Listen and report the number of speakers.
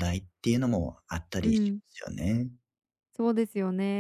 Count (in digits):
2